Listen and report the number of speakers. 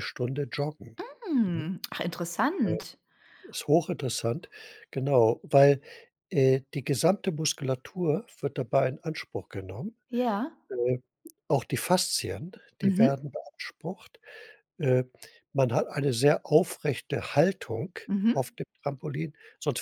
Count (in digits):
2